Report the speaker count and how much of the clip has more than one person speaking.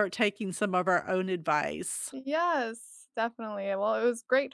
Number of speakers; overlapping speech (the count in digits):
2, no overlap